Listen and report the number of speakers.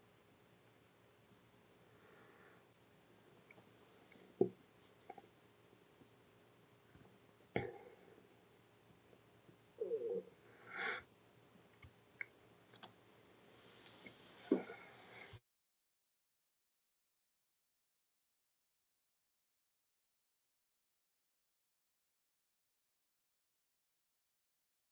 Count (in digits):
0